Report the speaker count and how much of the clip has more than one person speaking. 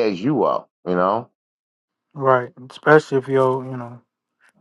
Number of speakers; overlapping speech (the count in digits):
2, no overlap